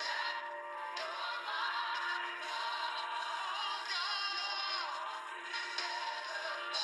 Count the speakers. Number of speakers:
0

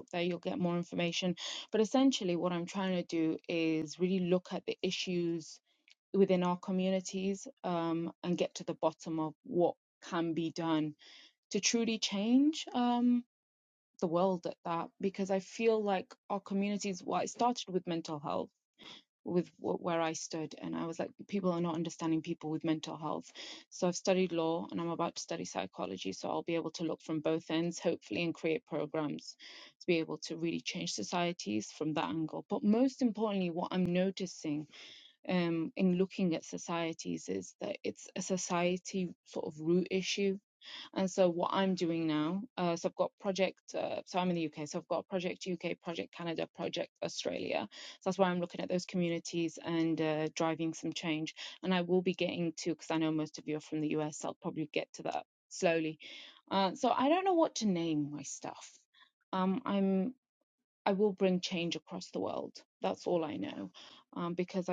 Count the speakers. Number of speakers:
1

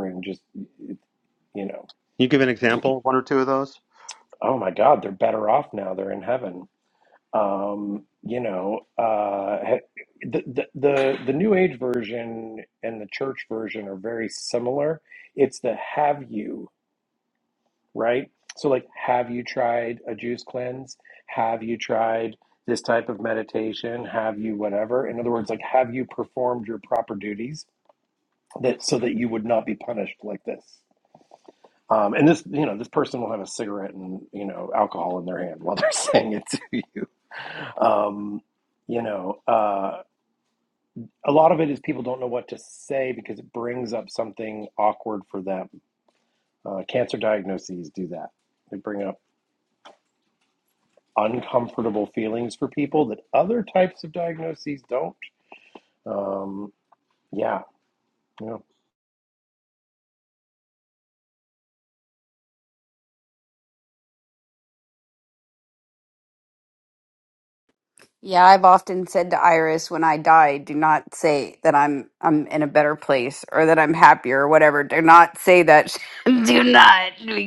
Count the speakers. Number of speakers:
3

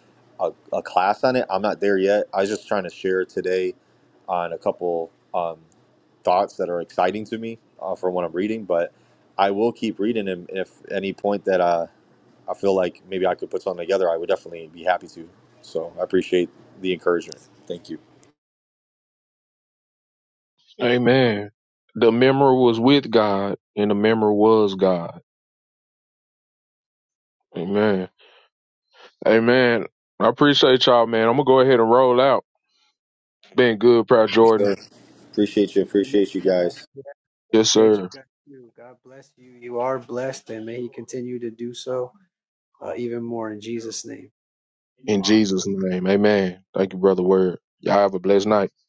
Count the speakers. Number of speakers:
3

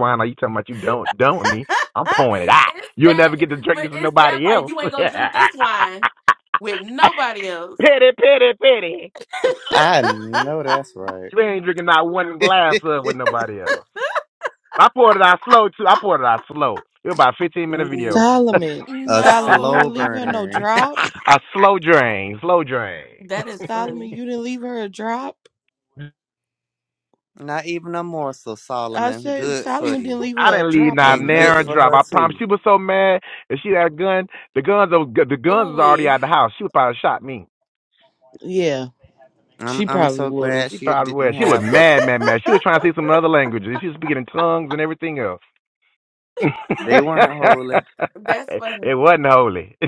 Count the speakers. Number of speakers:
4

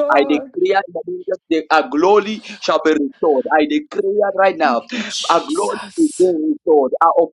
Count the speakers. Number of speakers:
2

